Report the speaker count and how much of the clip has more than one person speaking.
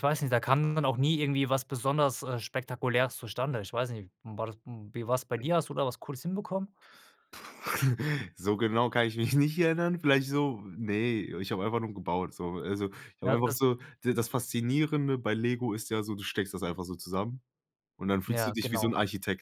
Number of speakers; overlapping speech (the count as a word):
two, about 5%